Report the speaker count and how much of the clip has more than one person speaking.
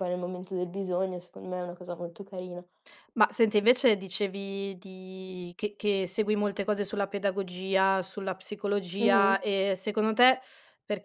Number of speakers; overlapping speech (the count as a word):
two, about 3%